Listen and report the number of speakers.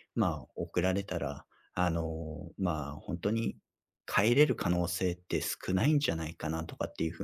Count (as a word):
one